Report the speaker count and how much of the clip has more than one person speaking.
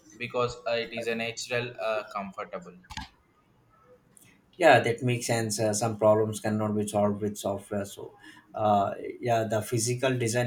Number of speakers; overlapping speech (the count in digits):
2, no overlap